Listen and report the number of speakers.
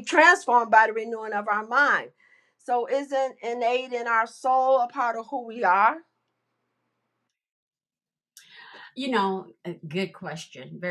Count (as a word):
two